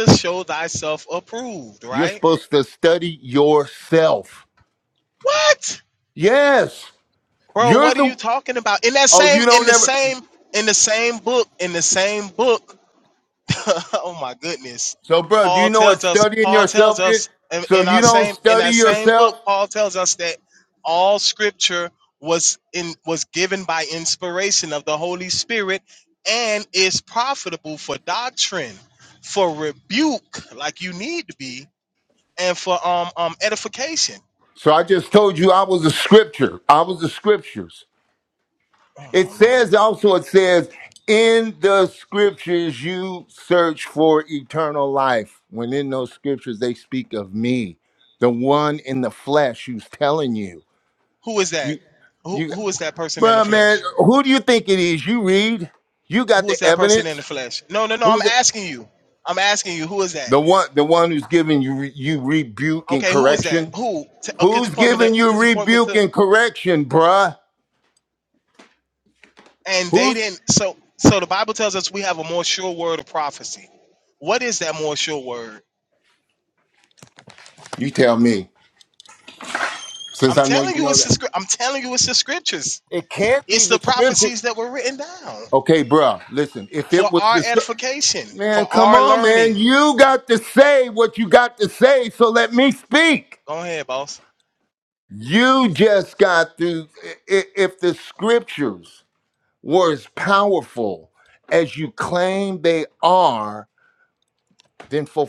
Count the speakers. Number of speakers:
2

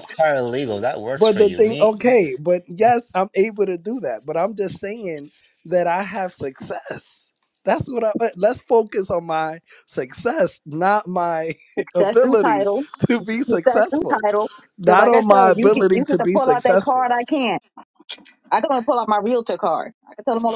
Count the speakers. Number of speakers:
3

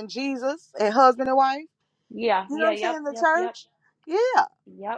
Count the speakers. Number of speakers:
2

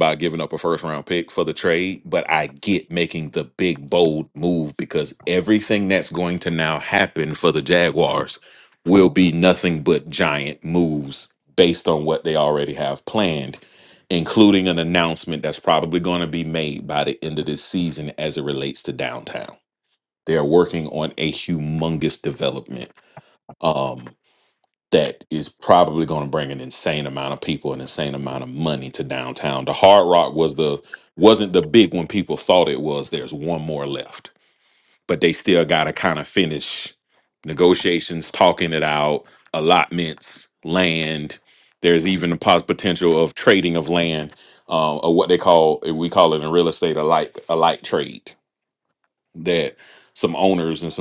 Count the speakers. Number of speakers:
1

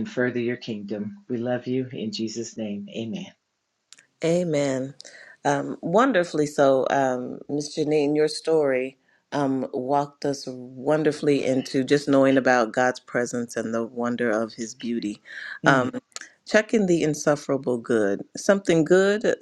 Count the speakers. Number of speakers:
2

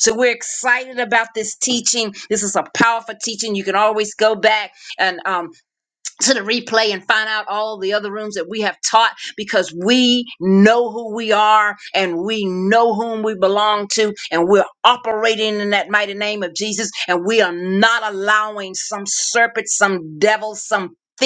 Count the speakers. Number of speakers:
1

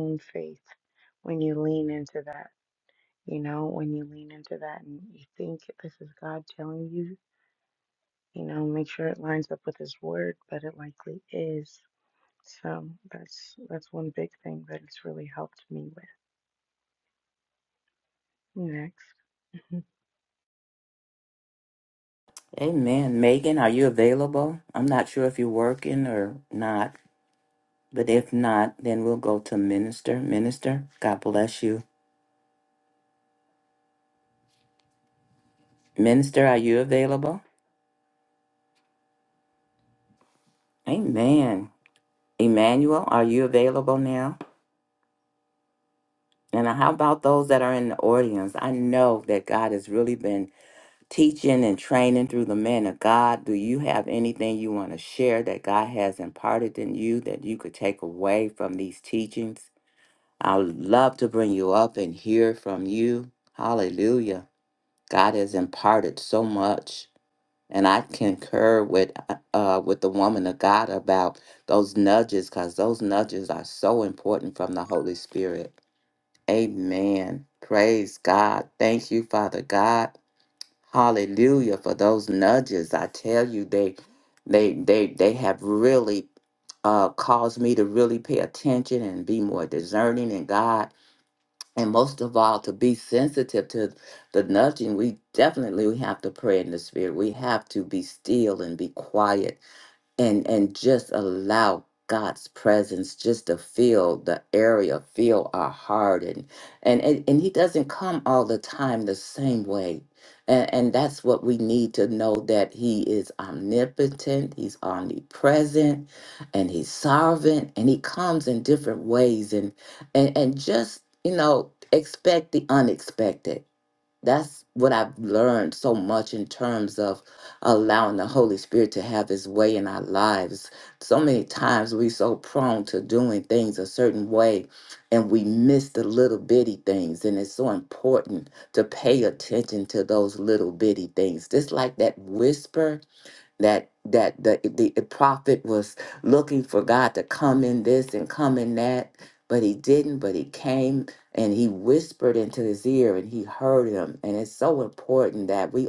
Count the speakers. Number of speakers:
2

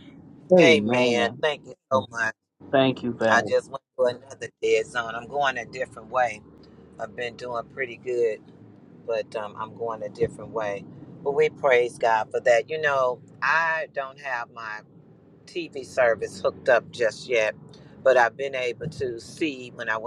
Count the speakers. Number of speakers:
2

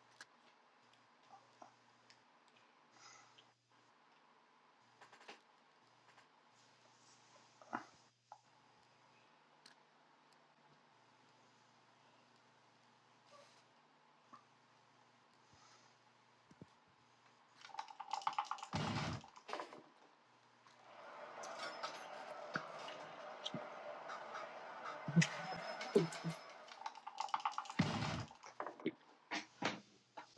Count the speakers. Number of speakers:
0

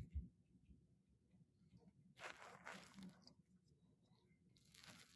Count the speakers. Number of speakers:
0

